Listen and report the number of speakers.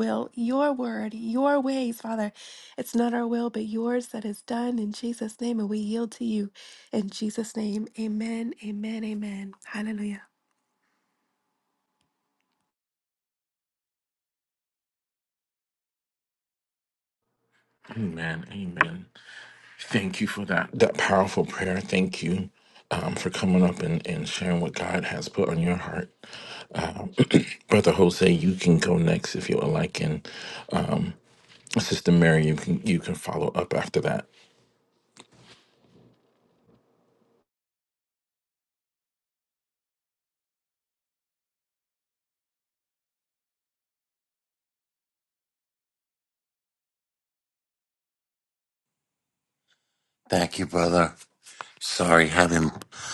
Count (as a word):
three